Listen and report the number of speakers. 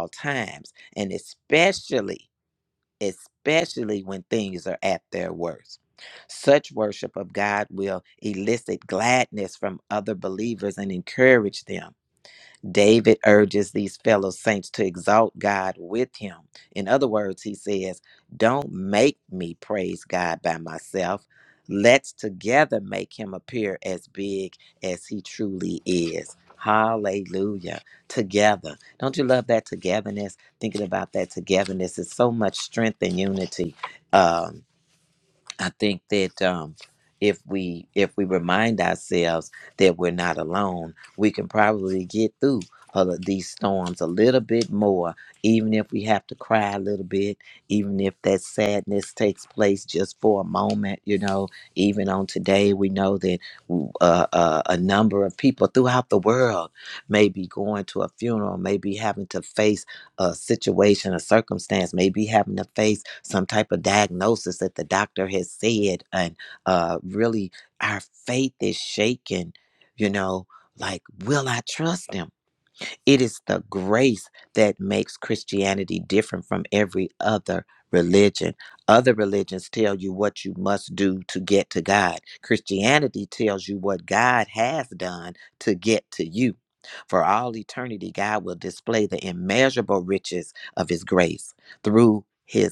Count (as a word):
one